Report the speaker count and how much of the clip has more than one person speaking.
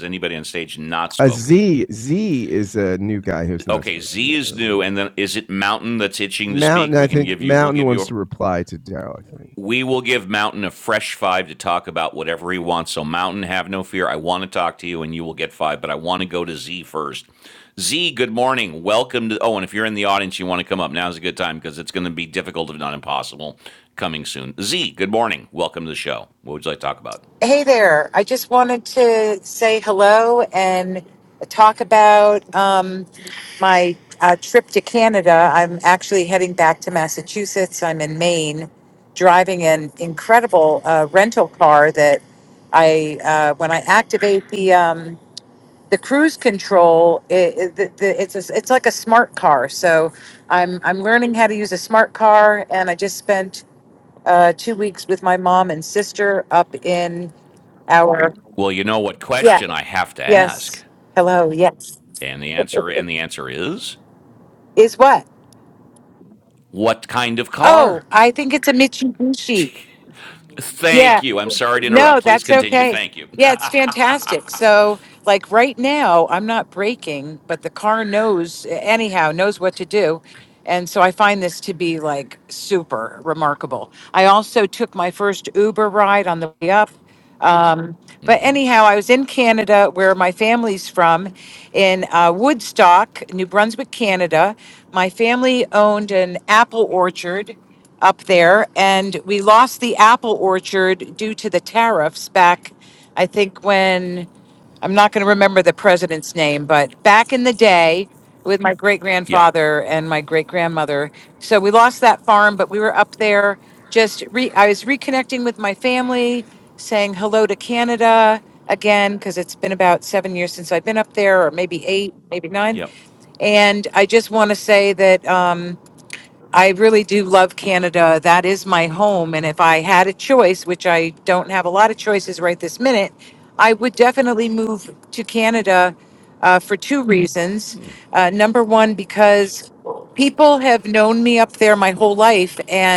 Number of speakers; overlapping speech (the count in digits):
3, about 4%